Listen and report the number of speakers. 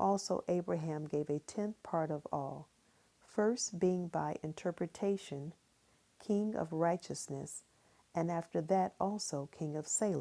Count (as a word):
one